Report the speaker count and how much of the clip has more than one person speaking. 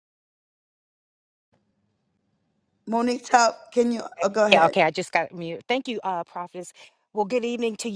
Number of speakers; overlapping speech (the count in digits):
2, about 4%